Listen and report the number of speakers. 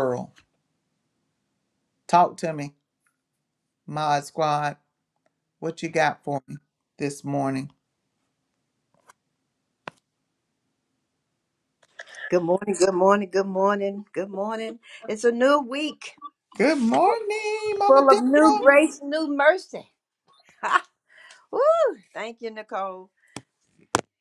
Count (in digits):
2